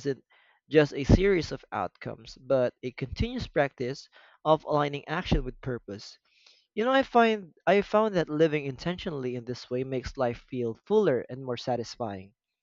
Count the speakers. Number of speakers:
1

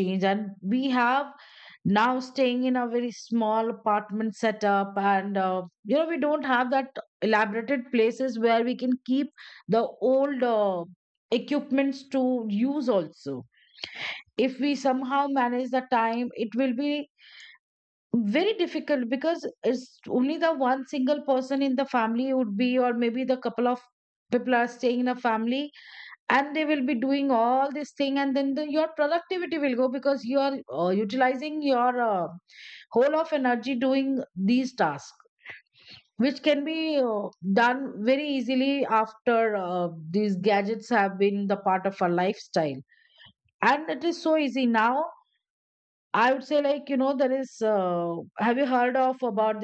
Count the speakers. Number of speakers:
1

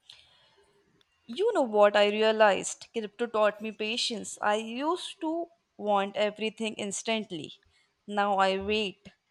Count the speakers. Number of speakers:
1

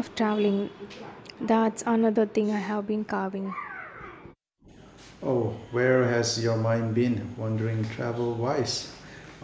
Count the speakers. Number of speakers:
2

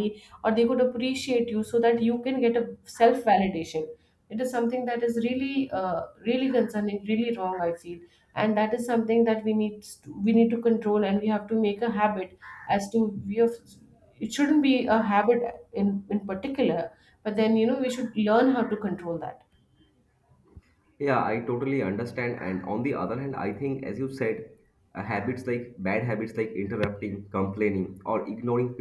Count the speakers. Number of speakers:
2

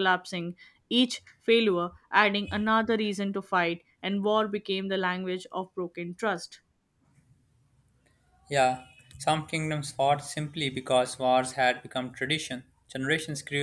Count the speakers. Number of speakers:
2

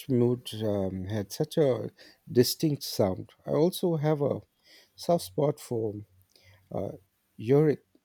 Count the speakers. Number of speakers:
1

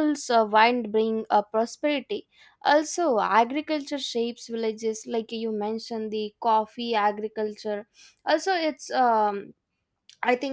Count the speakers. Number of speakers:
1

